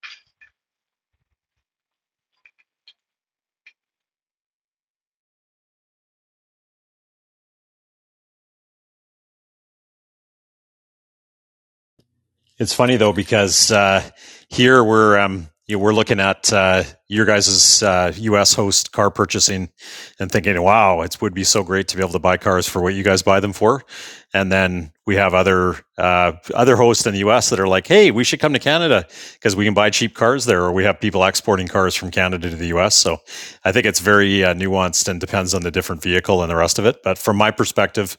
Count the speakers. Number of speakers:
1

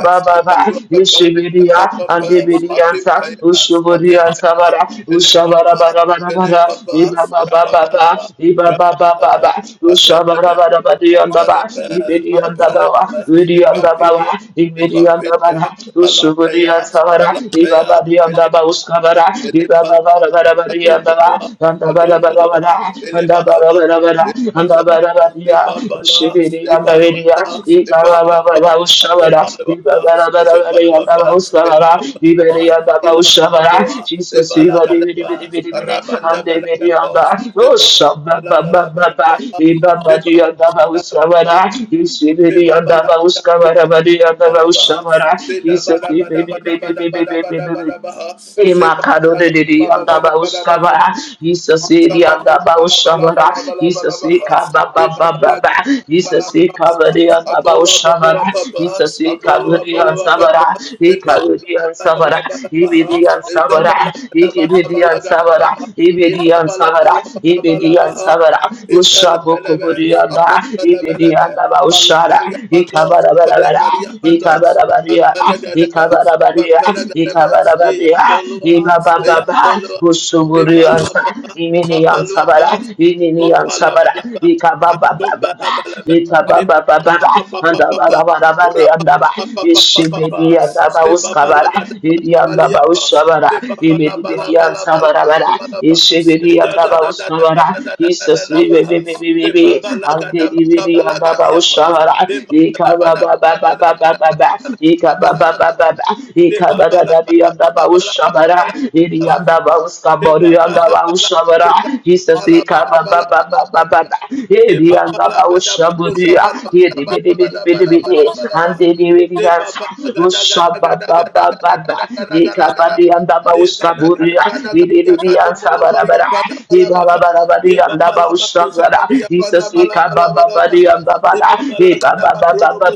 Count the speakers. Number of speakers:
2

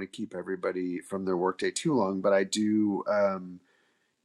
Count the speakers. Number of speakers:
1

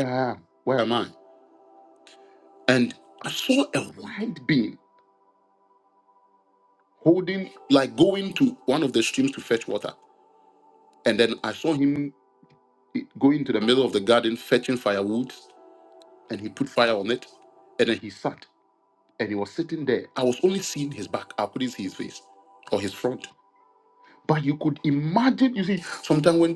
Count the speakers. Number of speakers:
1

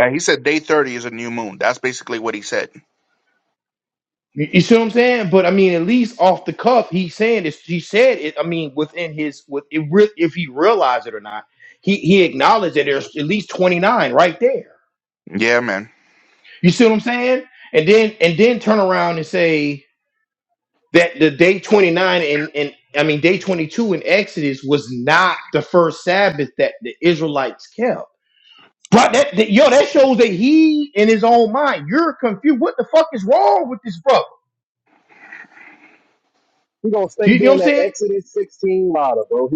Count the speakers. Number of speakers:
3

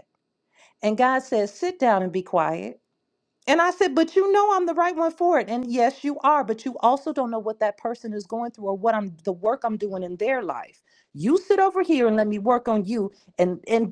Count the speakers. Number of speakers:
1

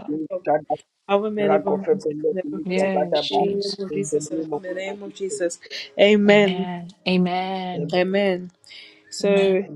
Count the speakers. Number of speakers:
3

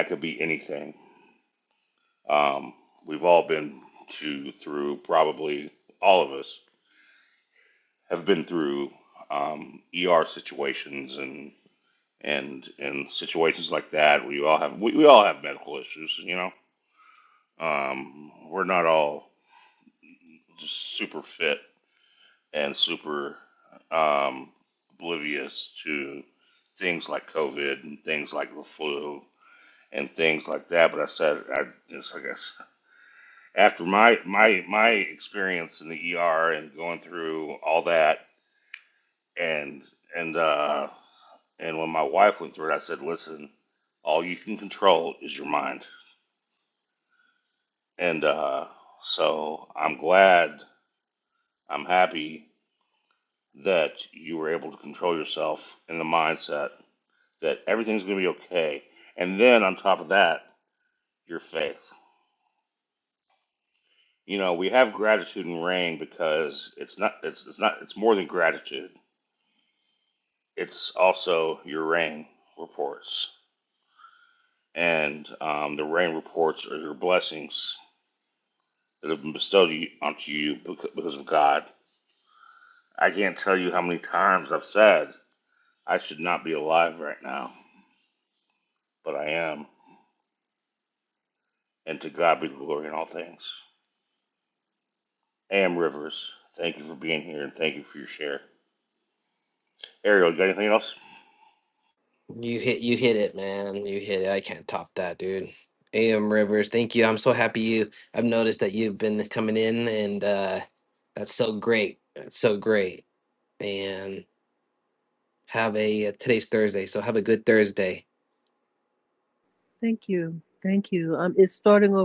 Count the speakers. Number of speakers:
3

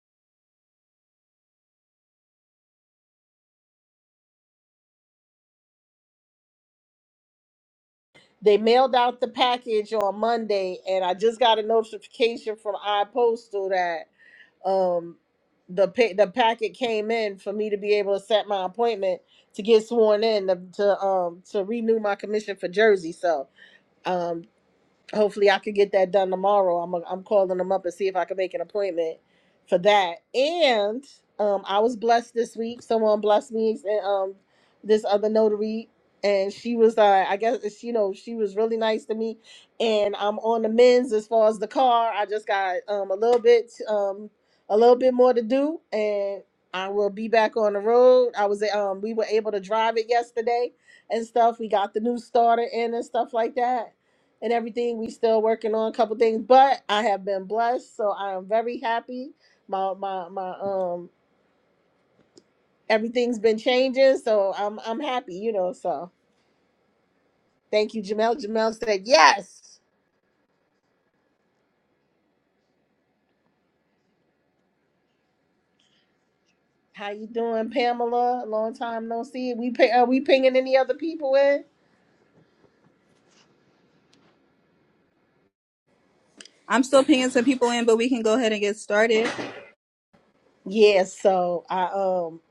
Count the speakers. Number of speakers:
2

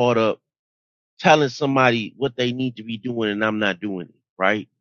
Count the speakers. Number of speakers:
1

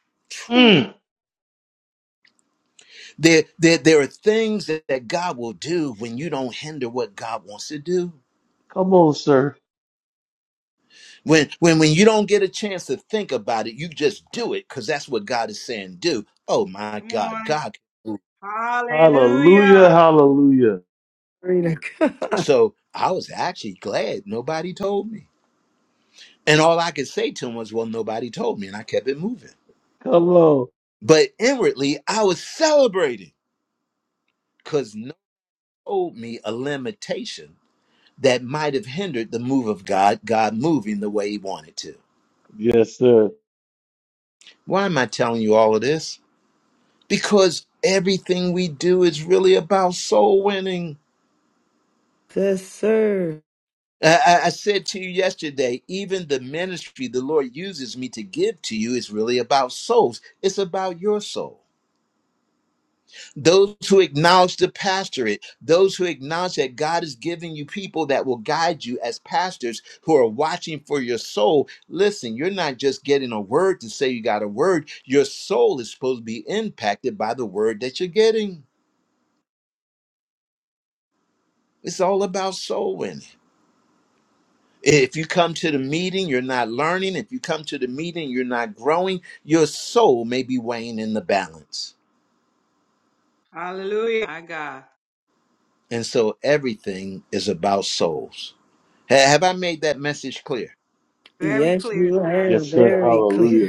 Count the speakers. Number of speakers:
4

